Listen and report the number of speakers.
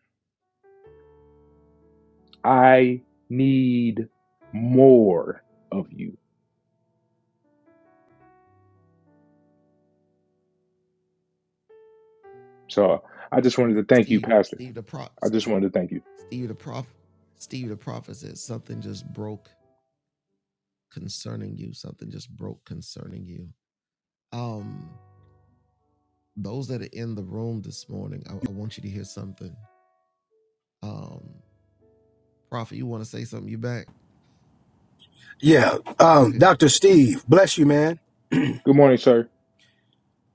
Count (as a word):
three